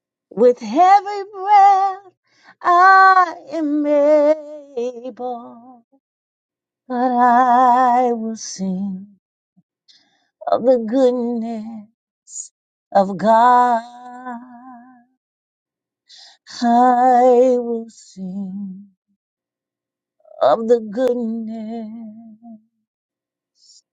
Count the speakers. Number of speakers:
1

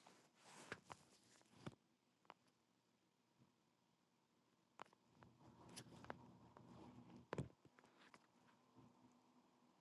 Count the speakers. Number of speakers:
0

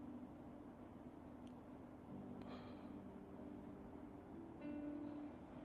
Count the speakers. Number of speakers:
0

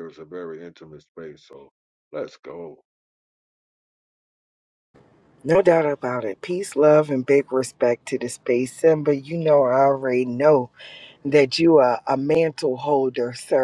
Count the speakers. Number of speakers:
2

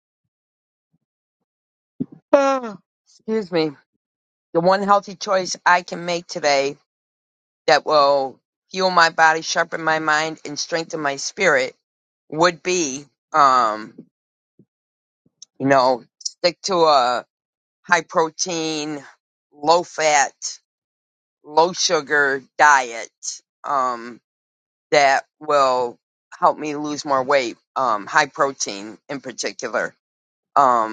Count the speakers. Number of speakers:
1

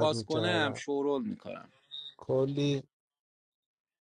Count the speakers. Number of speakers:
2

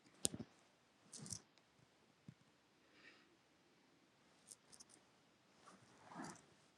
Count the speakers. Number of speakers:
0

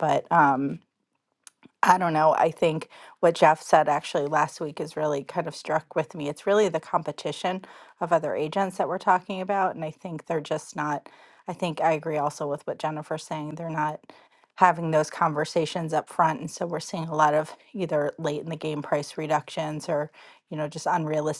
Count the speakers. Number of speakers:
1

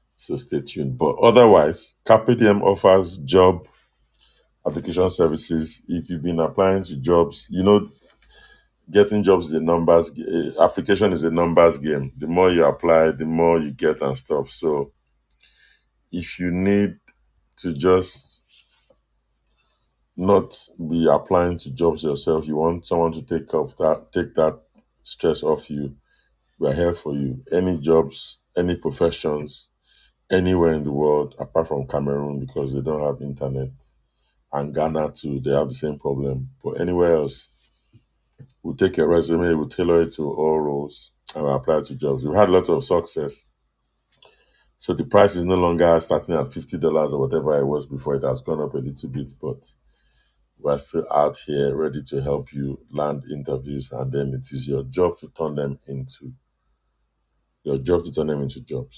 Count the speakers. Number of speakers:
1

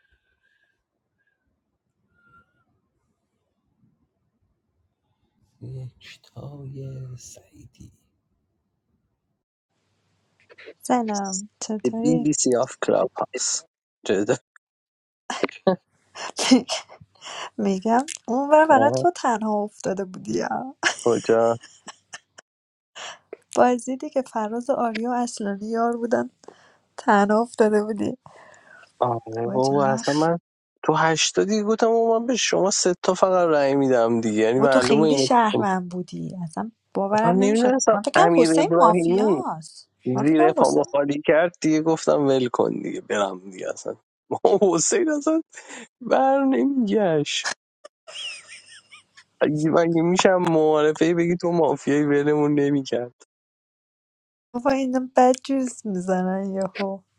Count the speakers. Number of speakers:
2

